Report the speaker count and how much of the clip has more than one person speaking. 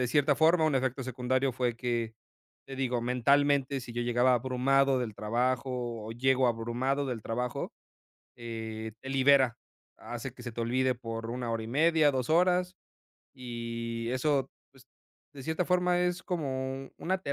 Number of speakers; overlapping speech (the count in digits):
1, no overlap